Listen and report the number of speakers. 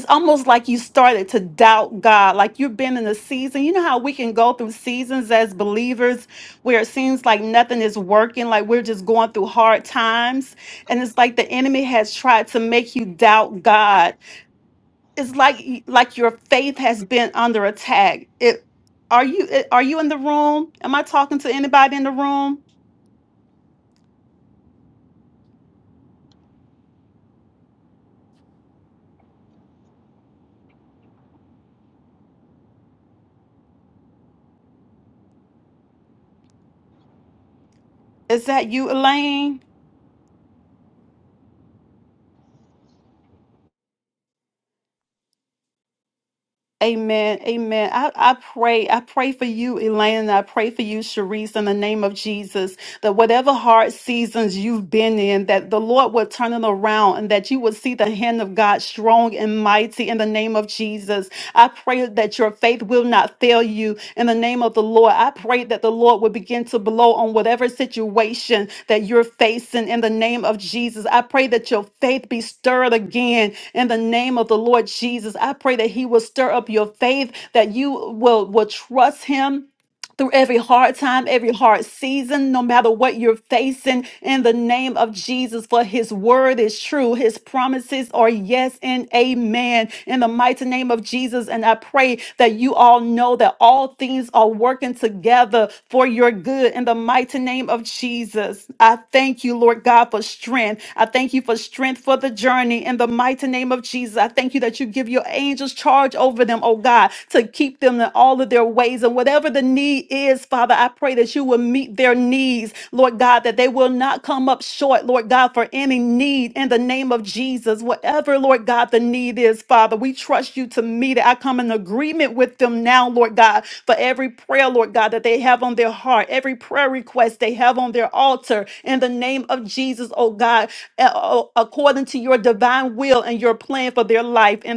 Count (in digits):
1